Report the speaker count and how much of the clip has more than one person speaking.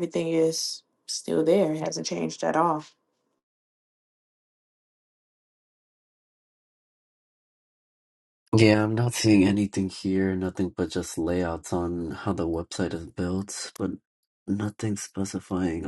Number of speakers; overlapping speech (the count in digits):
2, no overlap